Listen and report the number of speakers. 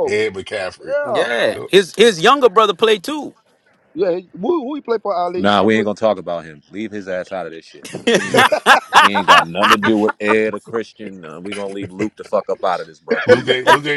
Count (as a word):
four